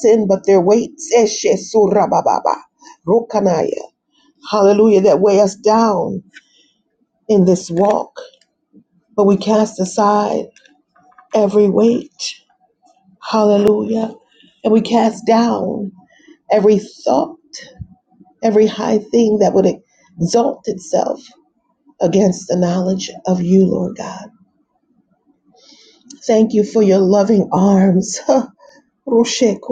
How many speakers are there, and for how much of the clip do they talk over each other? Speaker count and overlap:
1, no overlap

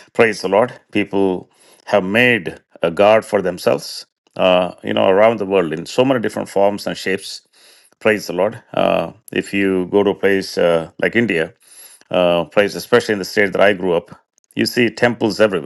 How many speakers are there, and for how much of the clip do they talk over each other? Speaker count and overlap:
1, no overlap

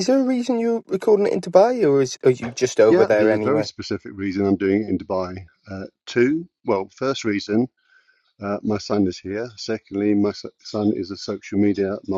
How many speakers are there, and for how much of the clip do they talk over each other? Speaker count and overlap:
2, about 6%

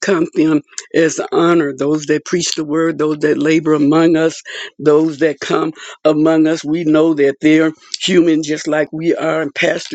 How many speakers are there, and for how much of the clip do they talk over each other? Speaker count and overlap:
1, no overlap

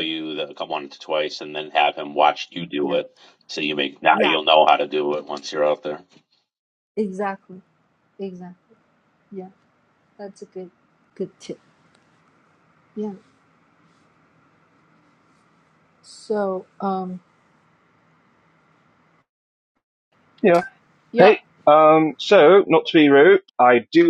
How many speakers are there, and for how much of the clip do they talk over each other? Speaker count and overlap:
3, about 3%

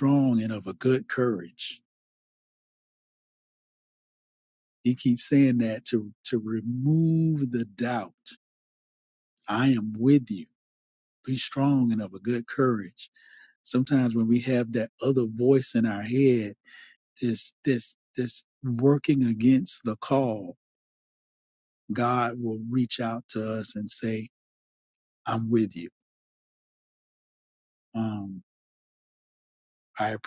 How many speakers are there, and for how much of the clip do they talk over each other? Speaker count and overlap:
1, no overlap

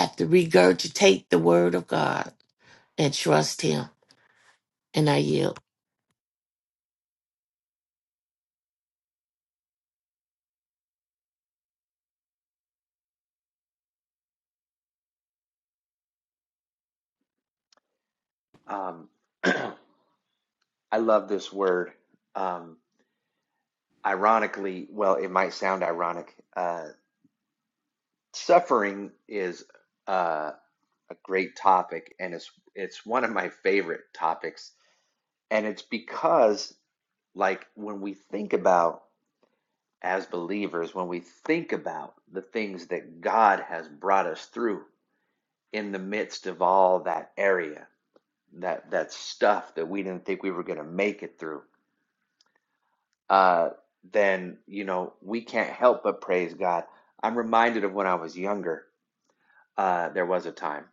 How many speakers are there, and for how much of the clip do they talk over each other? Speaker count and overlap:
2, no overlap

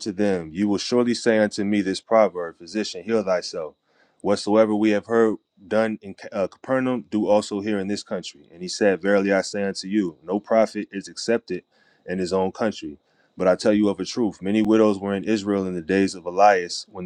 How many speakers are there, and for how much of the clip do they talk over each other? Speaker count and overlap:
1, no overlap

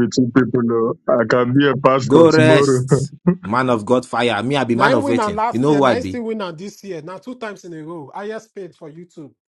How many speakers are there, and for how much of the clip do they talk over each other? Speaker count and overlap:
3, about 21%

